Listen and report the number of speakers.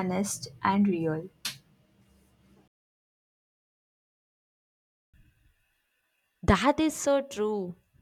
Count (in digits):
2